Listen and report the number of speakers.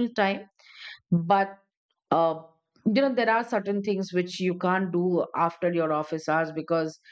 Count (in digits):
1